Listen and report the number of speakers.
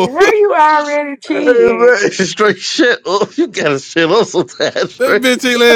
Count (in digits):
3